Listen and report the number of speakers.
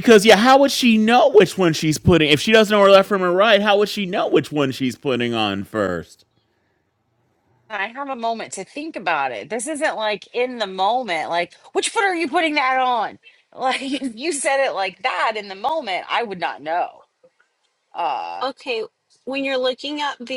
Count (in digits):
3